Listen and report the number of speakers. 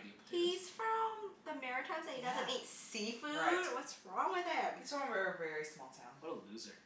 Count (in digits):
3